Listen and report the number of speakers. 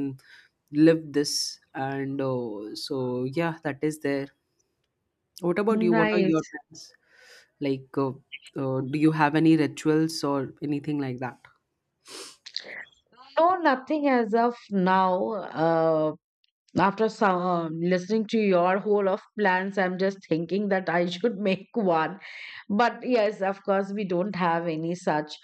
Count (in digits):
2